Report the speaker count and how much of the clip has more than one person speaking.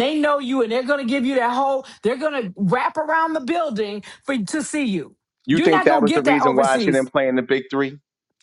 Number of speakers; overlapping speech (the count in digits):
2, about 17%